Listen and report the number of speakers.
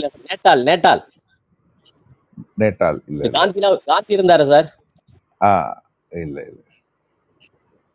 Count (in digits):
2